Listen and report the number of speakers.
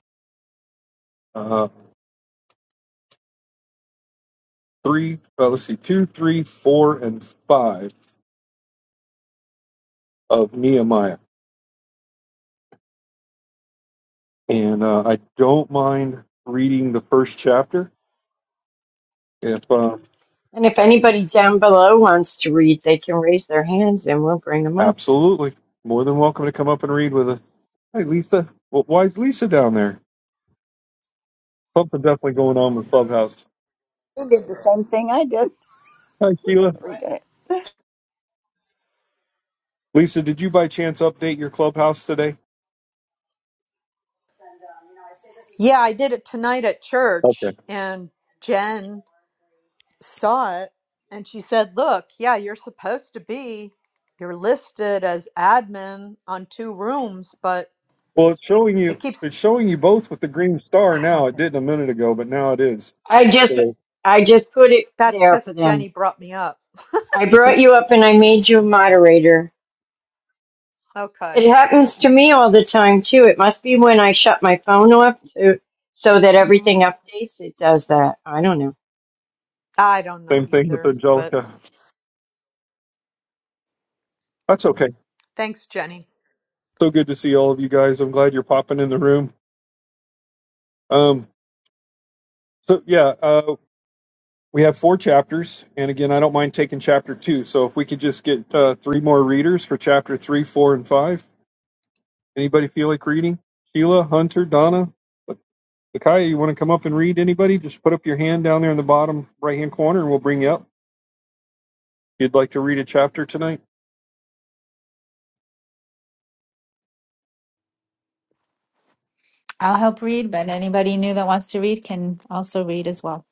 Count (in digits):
5